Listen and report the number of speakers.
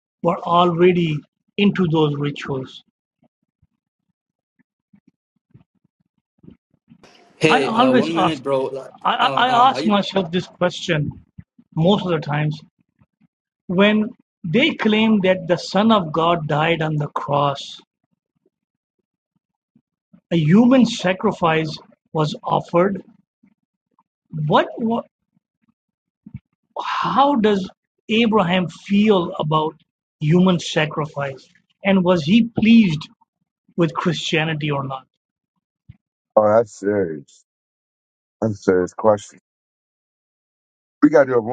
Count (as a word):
three